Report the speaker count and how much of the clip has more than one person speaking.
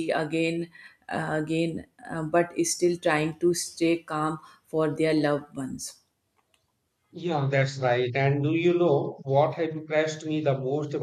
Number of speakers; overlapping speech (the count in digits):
2, no overlap